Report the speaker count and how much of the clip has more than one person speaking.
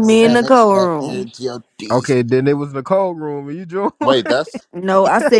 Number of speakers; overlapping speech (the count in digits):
3, about 29%